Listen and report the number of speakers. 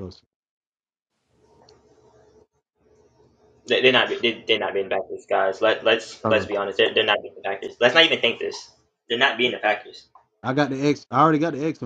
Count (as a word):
two